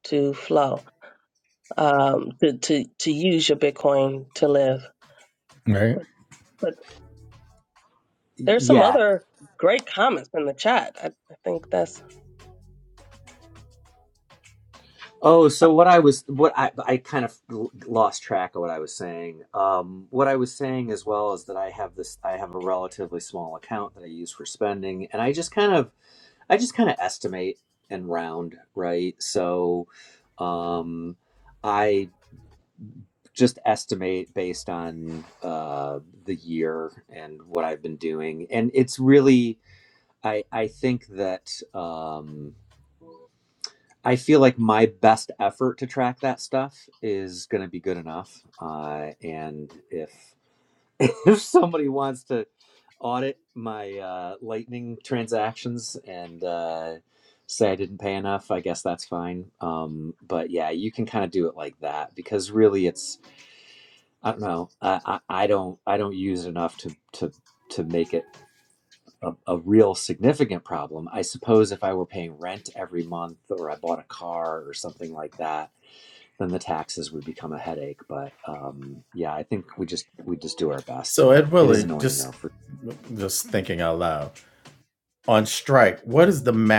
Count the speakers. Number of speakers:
3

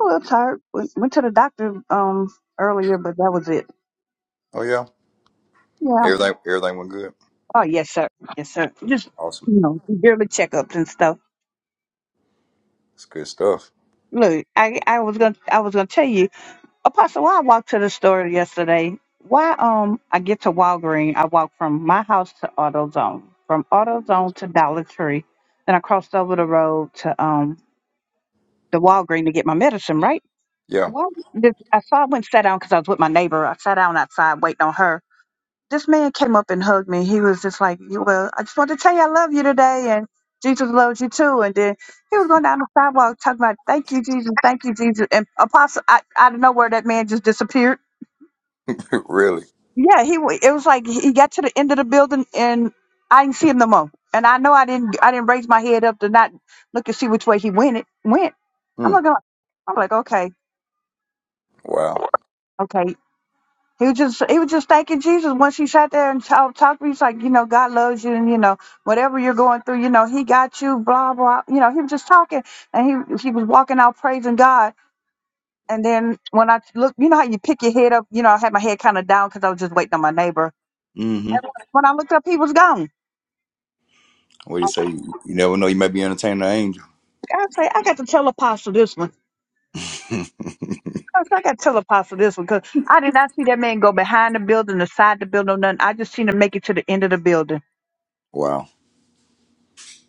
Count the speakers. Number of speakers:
2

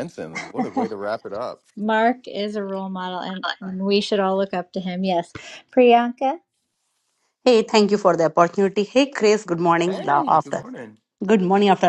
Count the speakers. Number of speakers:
3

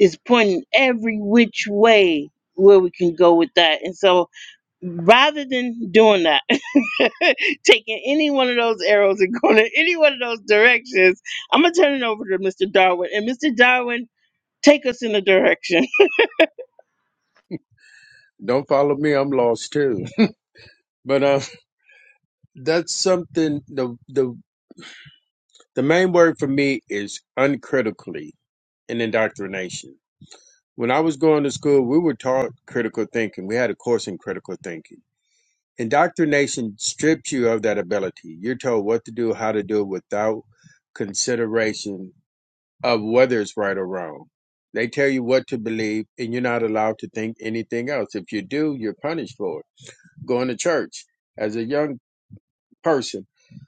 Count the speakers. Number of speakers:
2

